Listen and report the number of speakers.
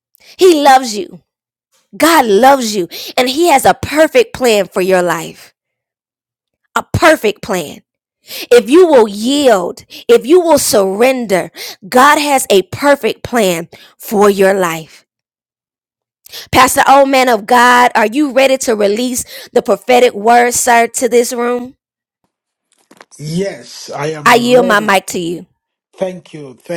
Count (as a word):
two